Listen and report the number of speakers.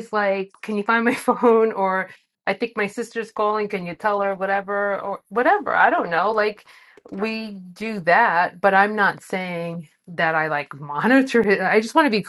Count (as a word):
one